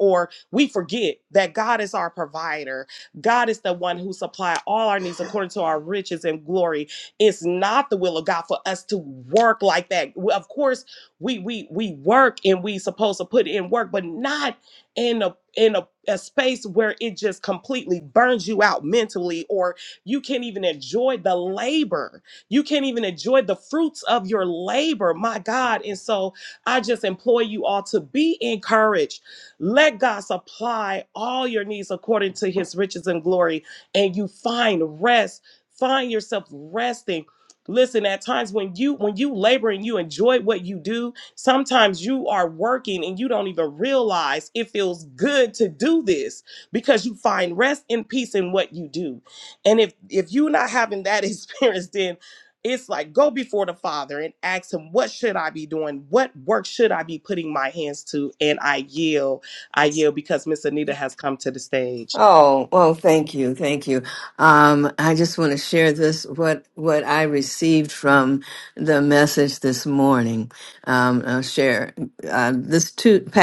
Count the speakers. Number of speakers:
2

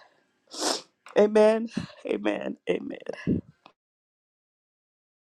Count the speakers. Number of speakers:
1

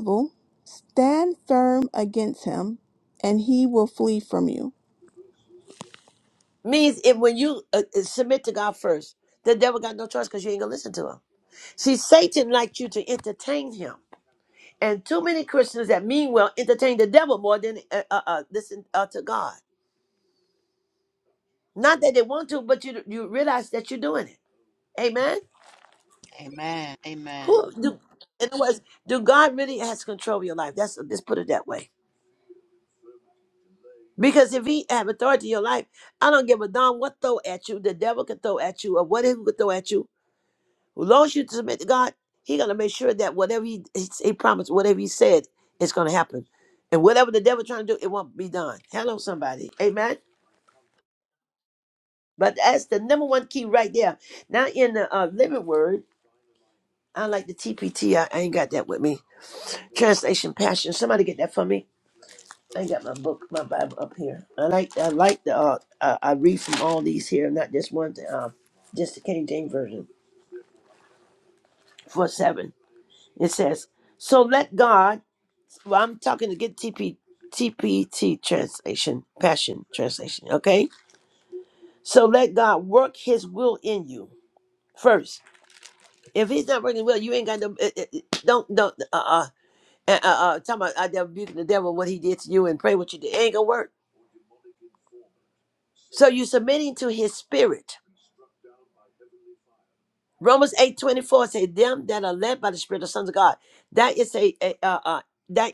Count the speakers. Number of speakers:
3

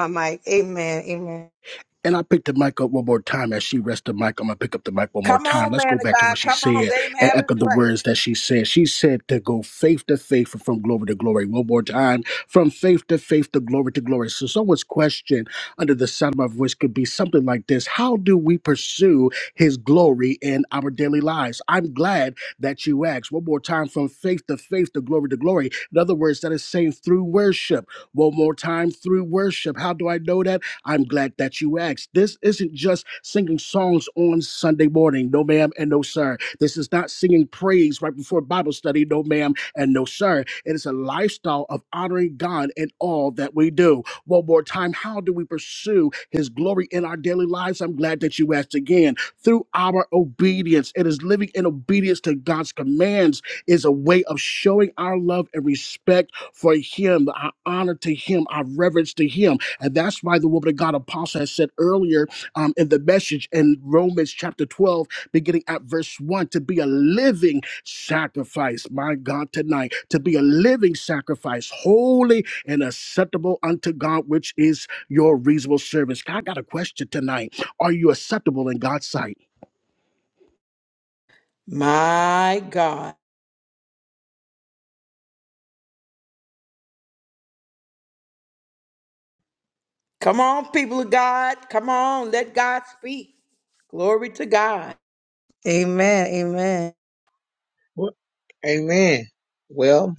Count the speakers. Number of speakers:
4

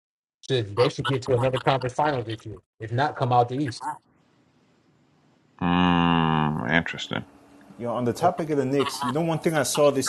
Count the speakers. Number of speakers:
3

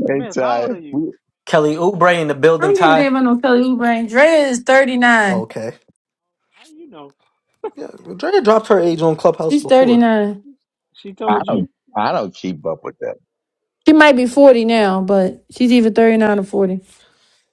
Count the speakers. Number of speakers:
4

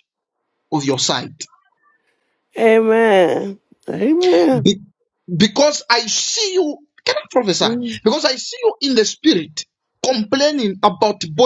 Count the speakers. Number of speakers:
2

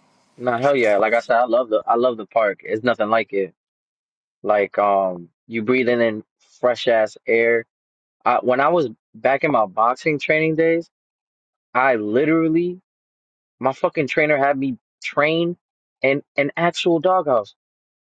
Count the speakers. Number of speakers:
1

